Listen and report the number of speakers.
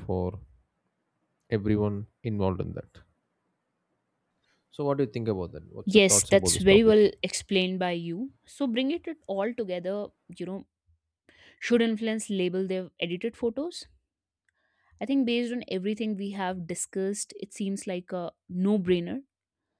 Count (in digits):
2